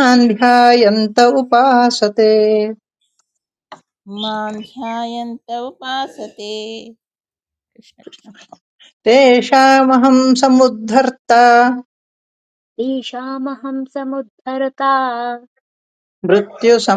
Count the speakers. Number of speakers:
3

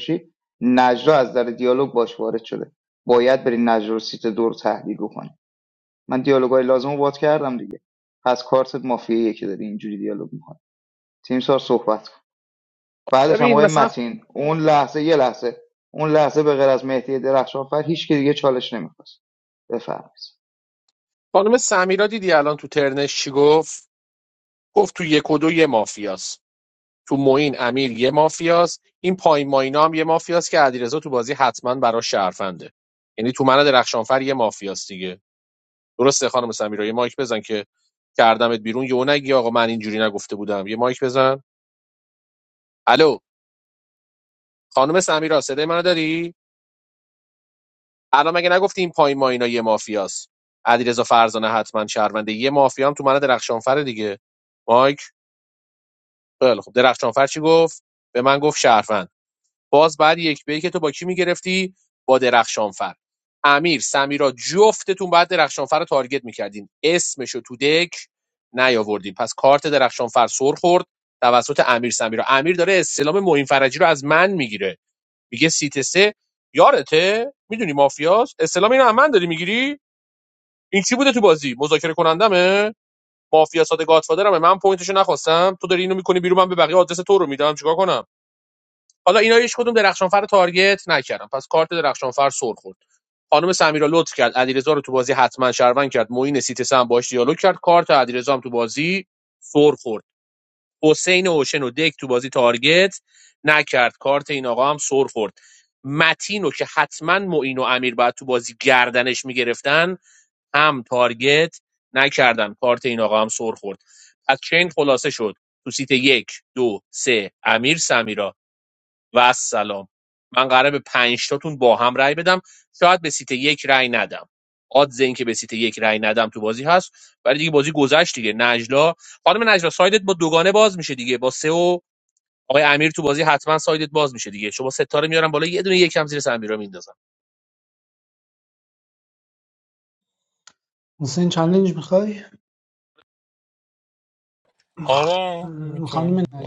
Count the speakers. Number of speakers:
4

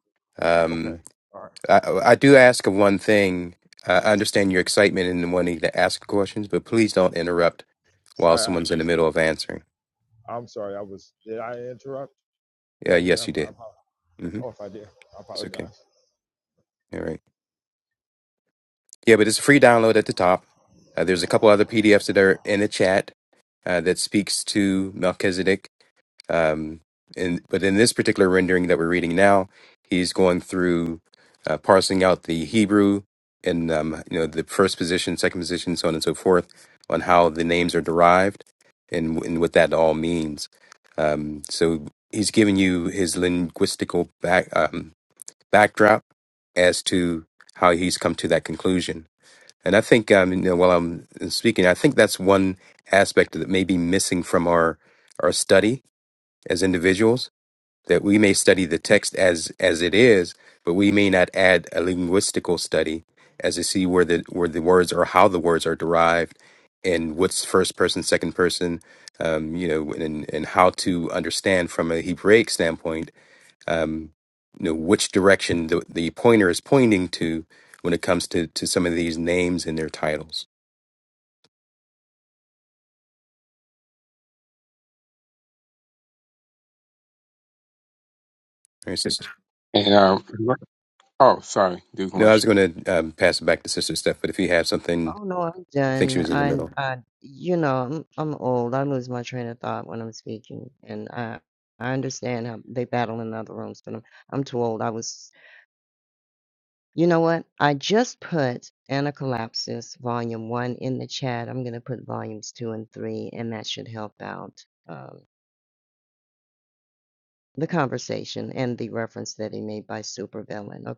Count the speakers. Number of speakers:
4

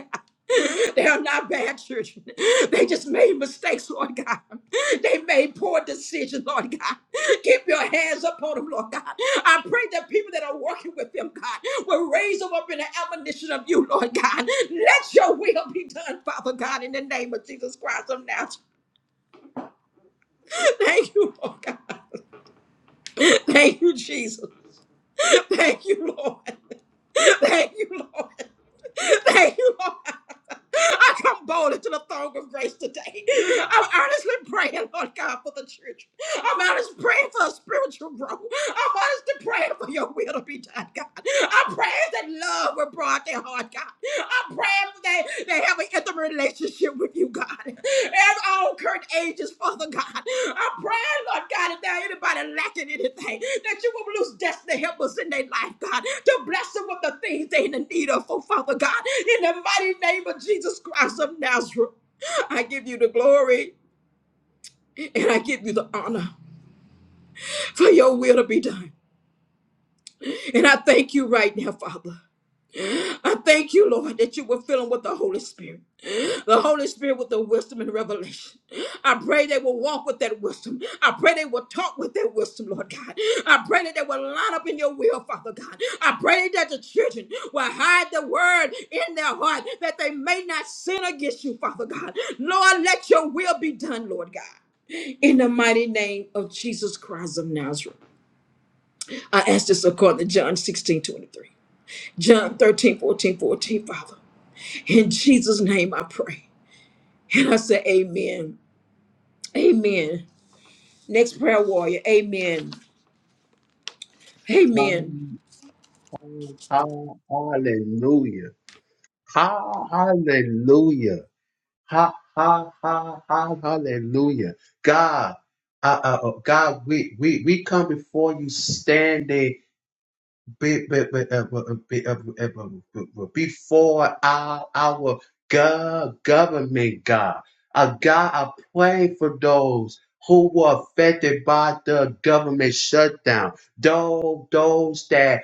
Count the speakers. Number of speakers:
2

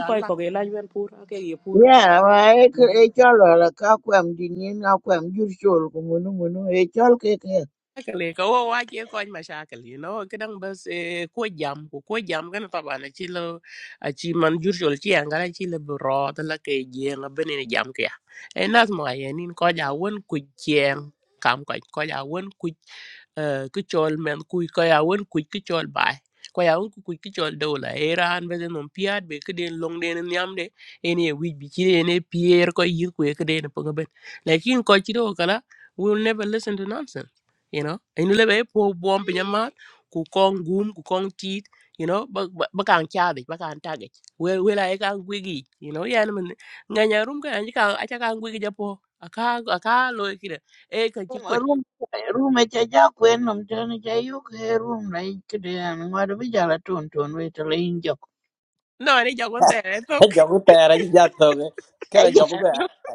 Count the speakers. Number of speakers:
4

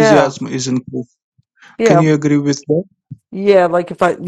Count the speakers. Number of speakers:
2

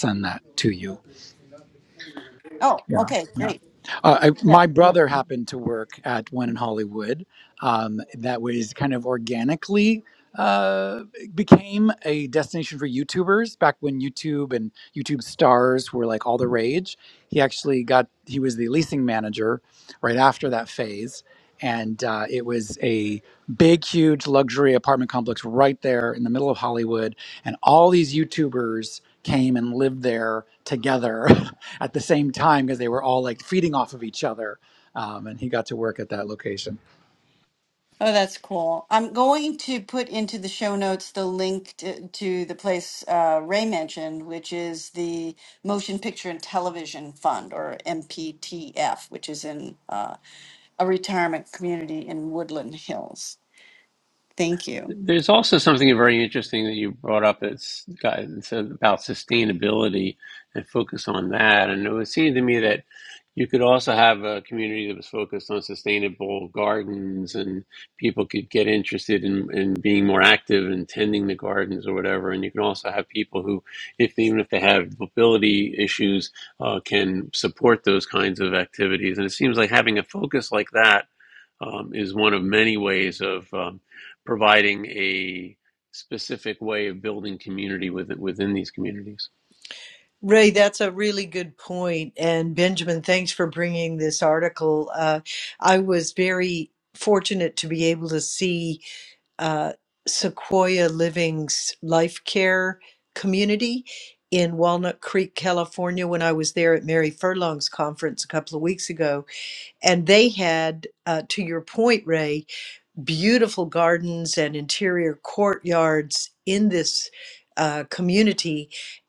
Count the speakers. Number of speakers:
4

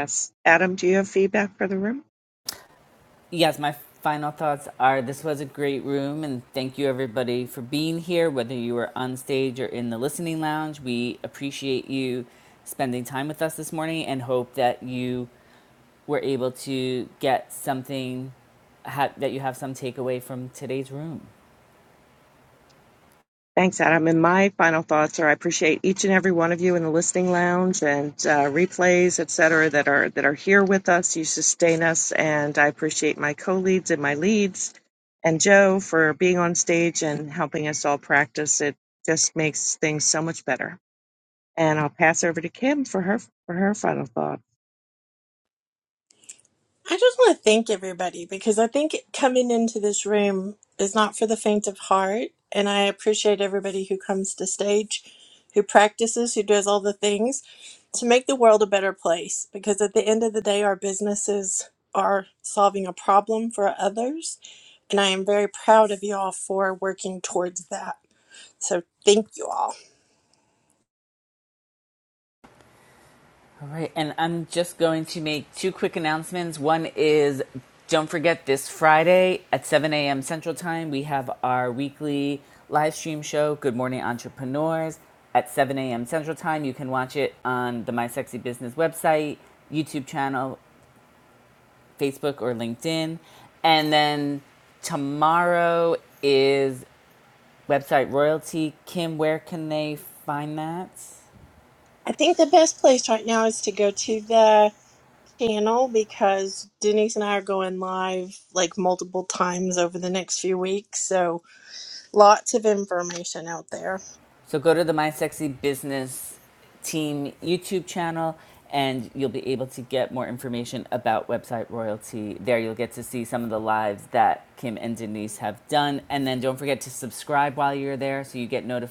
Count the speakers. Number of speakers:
3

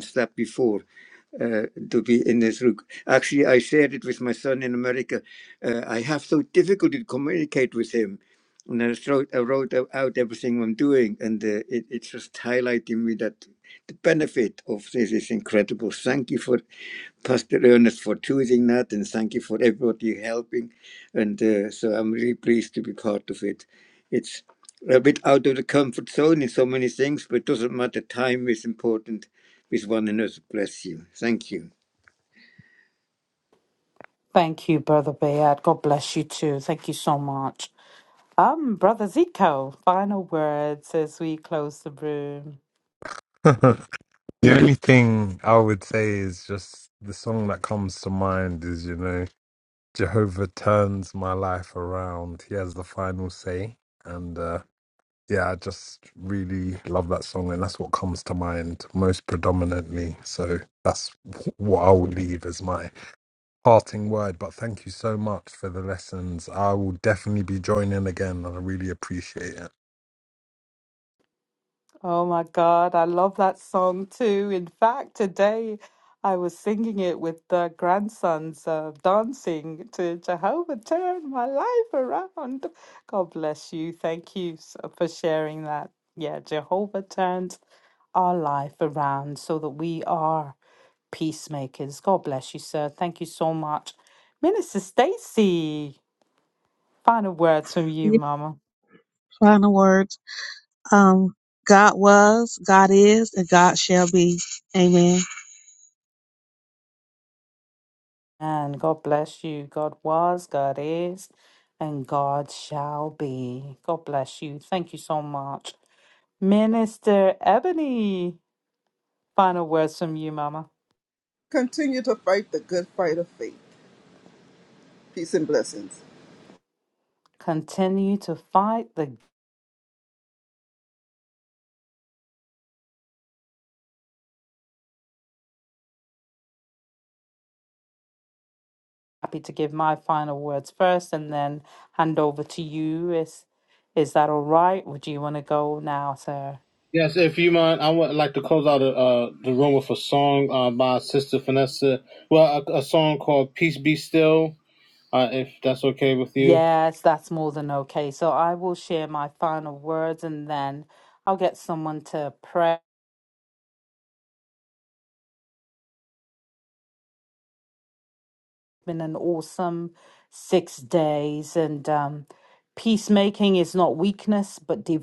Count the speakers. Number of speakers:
6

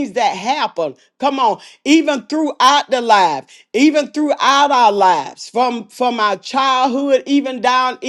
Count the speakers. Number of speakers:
1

